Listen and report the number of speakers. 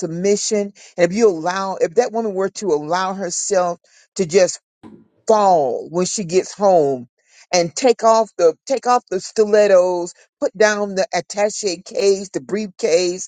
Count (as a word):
one